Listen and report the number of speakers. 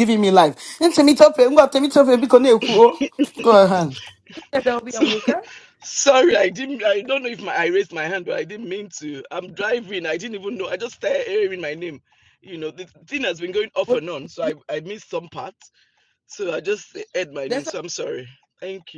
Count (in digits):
3